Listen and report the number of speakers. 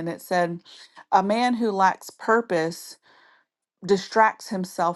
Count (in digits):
1